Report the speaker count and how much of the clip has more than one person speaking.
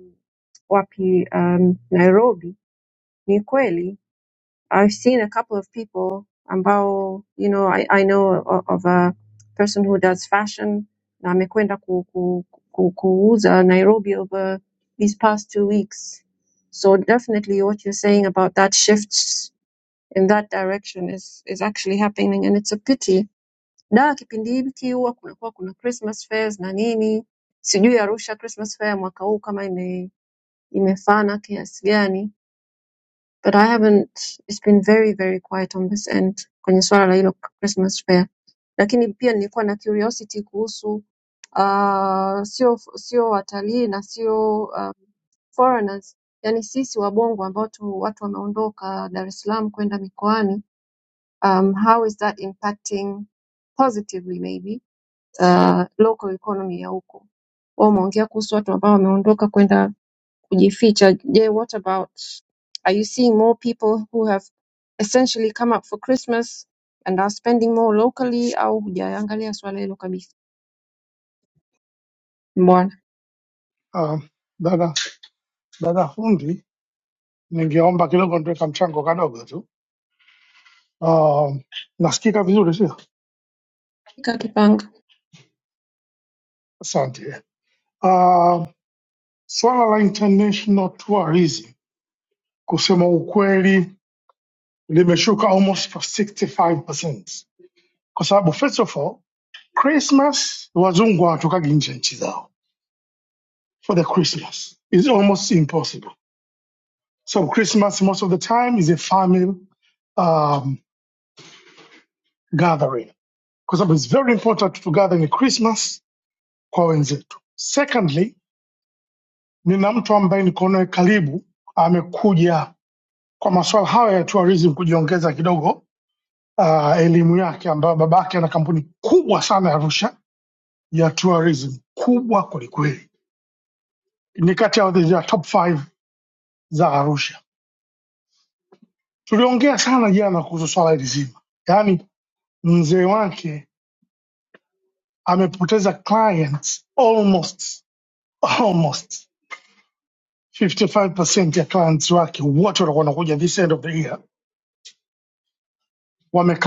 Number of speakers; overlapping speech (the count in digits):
2, no overlap